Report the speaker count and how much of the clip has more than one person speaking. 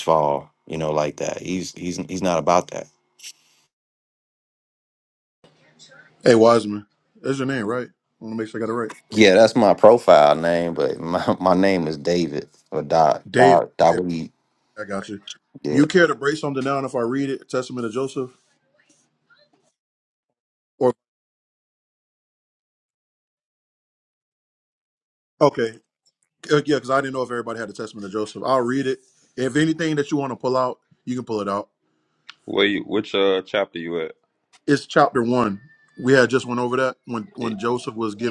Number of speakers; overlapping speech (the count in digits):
3, about 2%